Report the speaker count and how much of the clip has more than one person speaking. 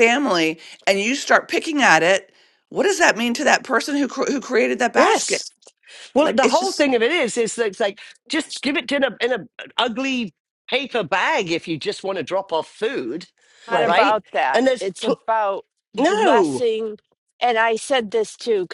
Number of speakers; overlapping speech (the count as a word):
three, about 14%